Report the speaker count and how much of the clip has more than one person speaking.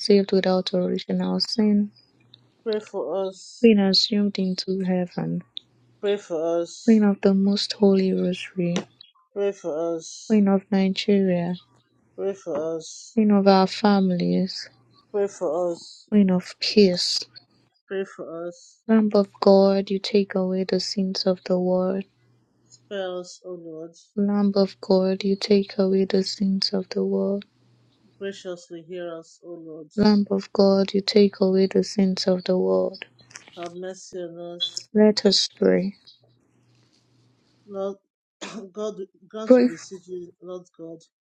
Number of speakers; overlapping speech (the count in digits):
2, about 1%